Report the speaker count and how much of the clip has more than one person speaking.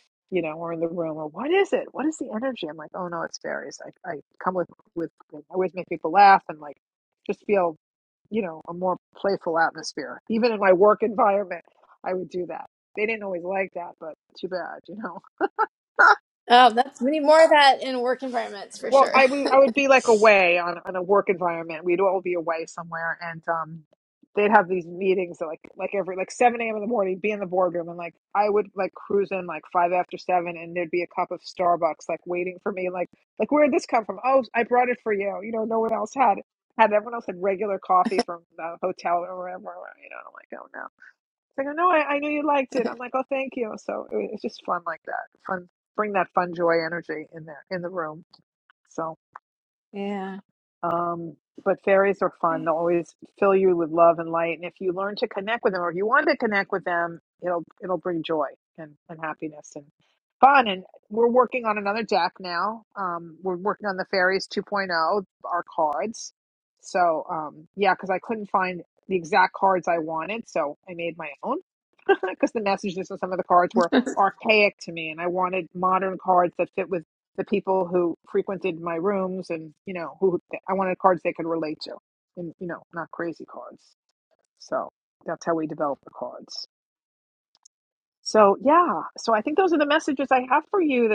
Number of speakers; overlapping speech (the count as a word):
two, under 1%